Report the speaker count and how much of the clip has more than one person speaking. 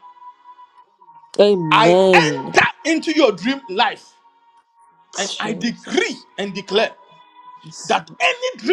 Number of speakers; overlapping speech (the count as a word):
two, about 22%